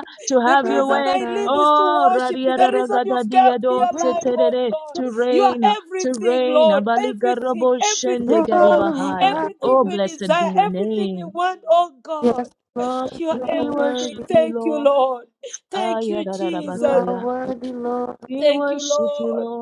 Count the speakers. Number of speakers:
three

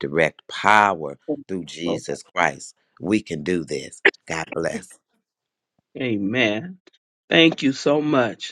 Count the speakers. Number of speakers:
two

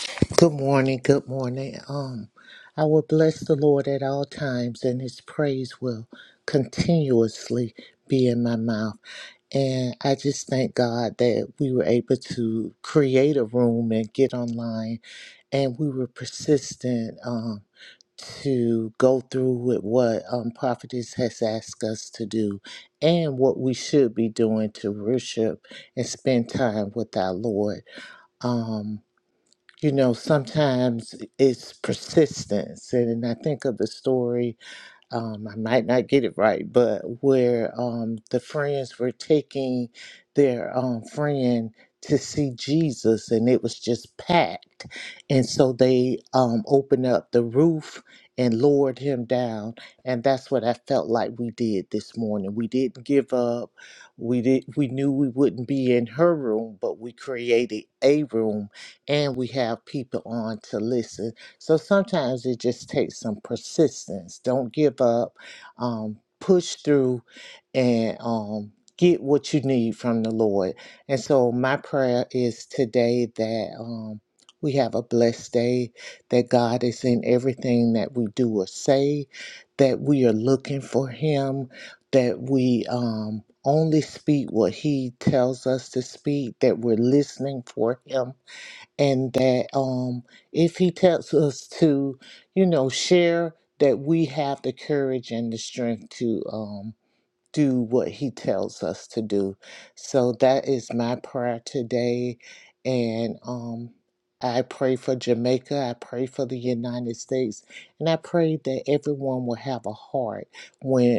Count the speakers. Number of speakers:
one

